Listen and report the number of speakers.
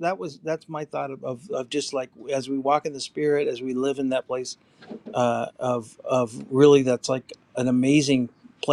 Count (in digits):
1